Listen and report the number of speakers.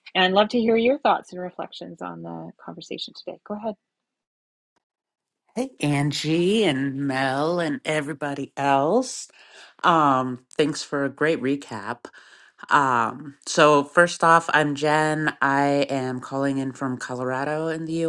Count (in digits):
2